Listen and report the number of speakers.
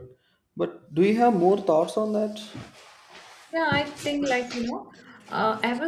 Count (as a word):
two